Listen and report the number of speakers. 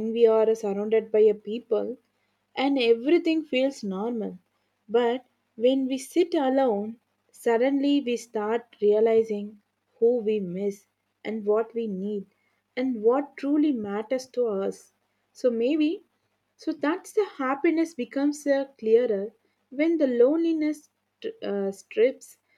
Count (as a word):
one